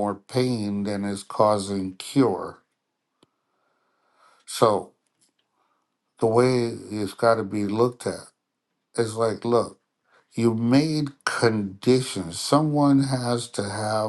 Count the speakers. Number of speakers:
1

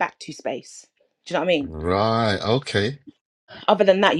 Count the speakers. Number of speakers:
2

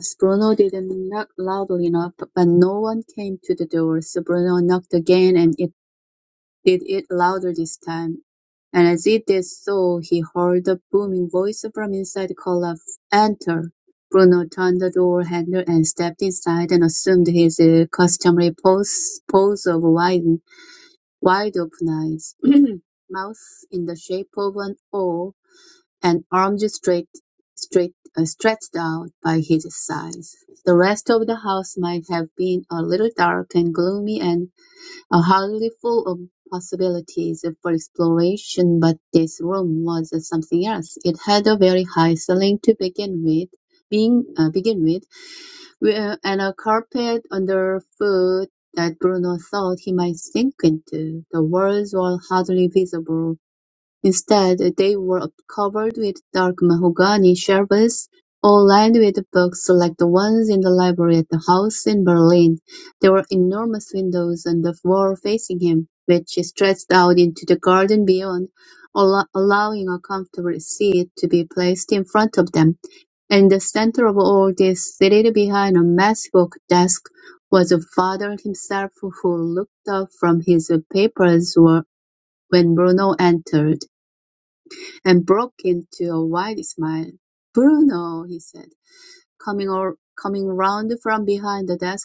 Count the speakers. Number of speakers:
1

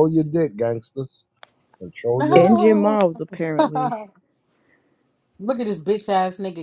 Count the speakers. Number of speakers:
3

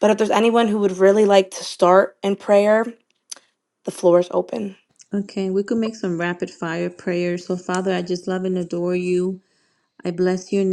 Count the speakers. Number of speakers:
2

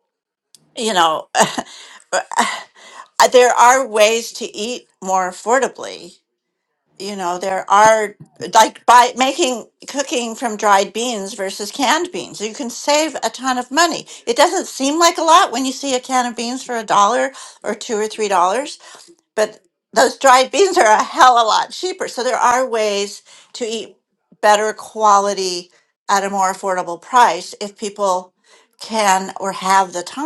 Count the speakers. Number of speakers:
1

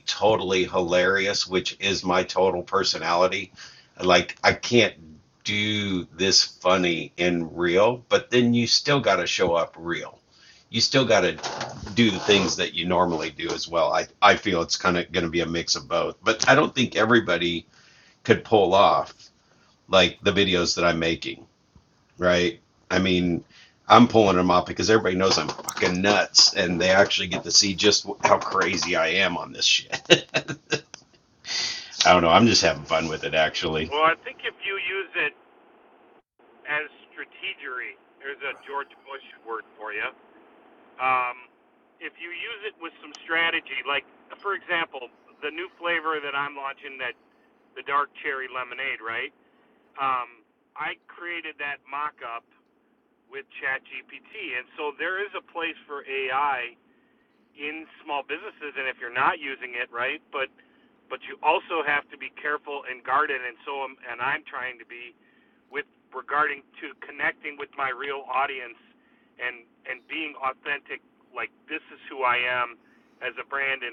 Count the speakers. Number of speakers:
2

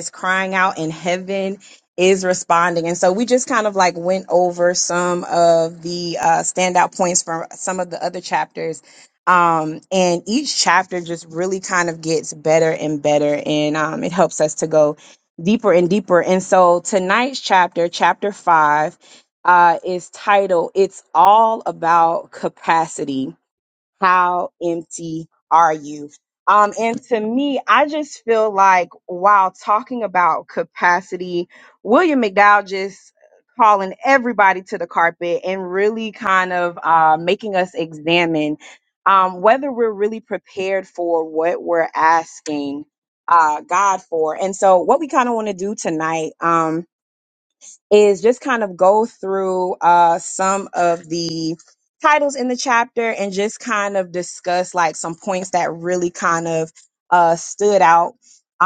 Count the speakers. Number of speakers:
1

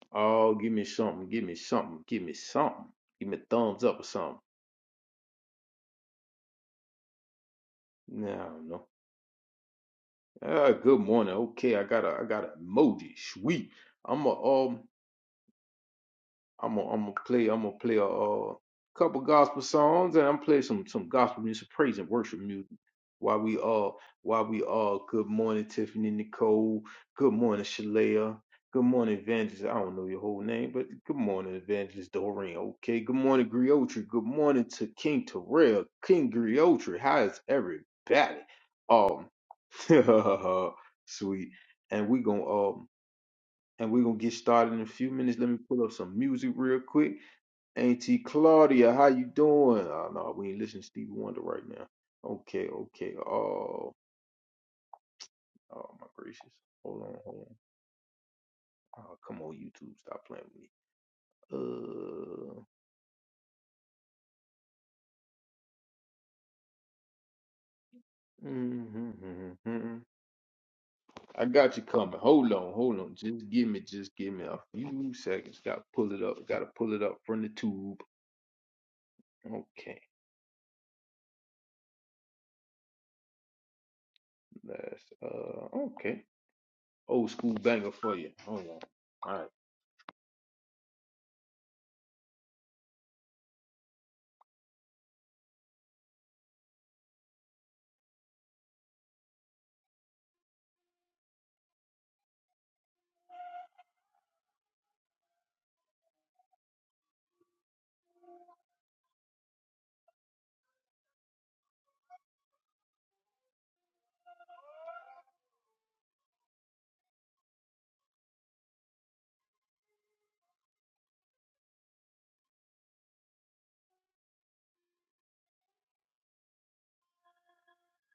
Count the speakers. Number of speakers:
1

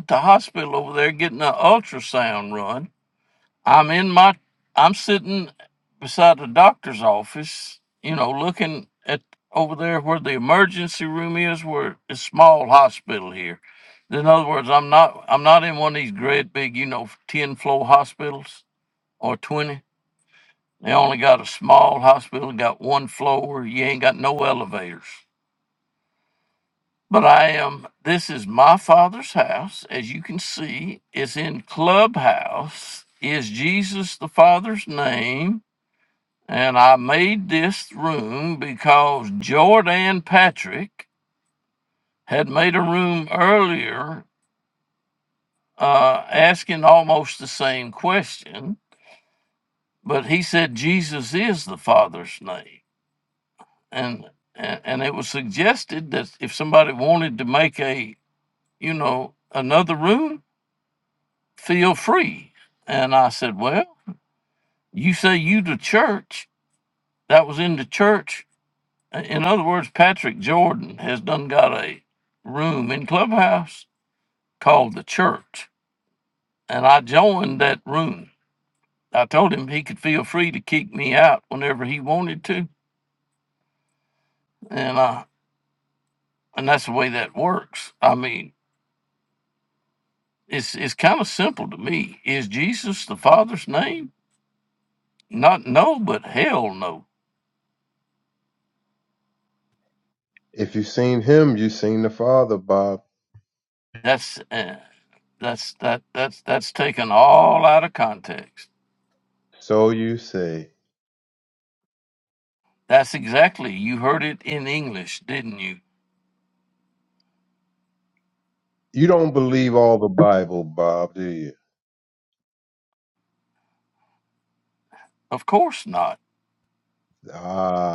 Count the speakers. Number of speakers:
2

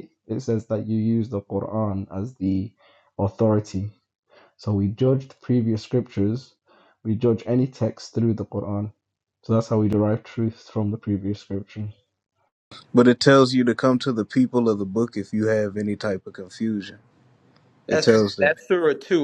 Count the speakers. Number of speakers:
3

